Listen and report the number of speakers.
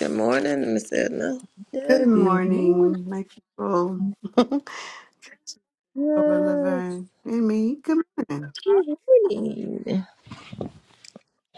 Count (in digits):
3